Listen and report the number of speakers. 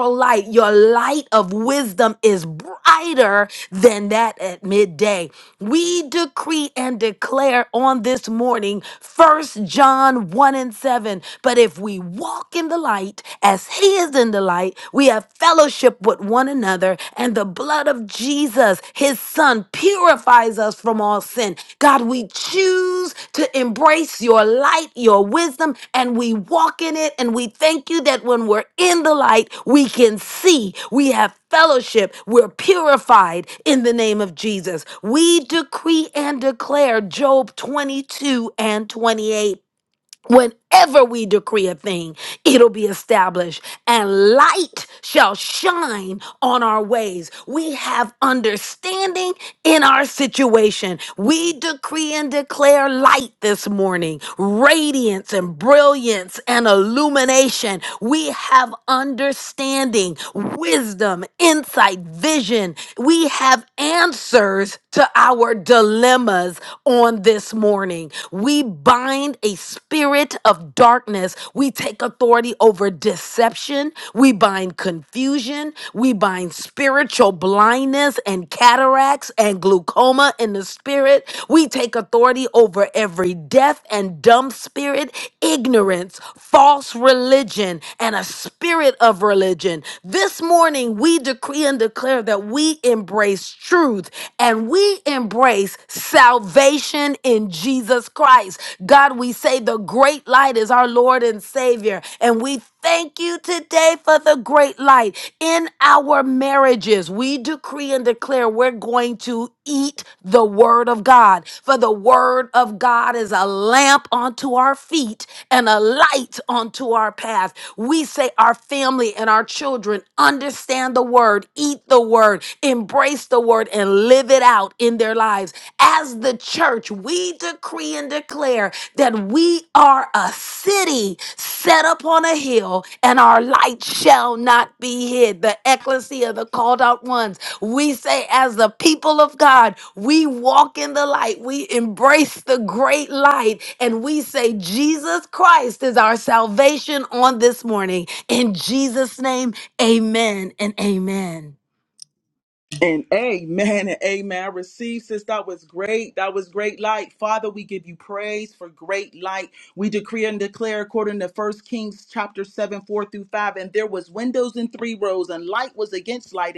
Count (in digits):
2